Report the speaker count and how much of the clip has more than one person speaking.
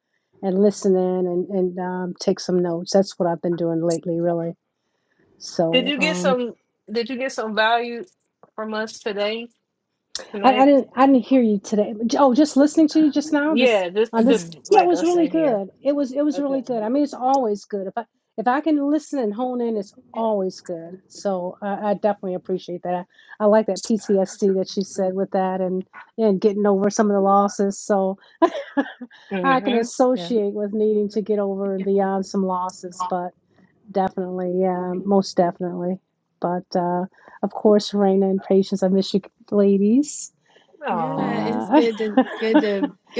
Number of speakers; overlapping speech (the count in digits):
3, about 10%